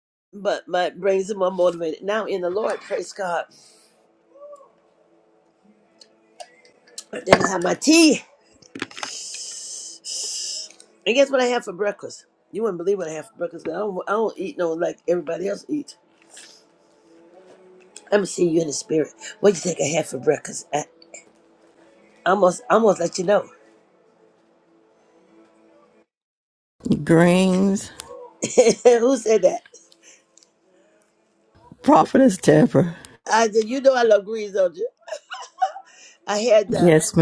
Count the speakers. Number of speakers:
2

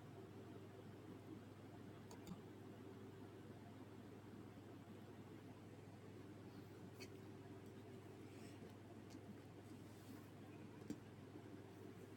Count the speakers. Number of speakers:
0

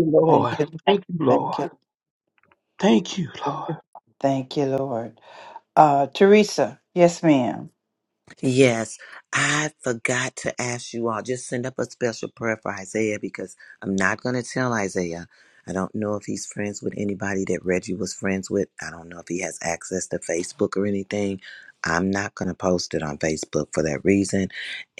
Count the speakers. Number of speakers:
3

